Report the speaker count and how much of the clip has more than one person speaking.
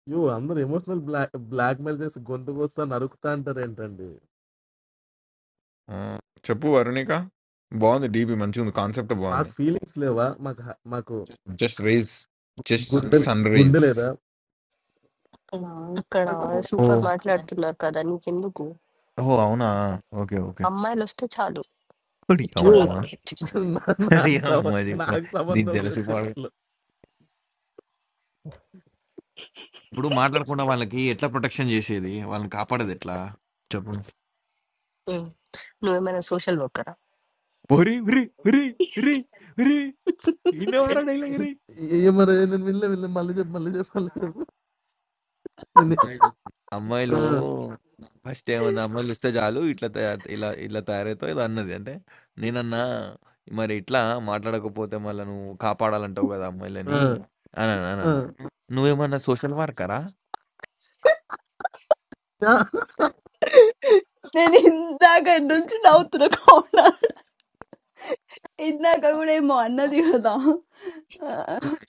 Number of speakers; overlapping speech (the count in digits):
4, about 5%